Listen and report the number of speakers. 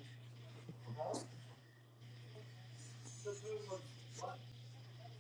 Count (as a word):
zero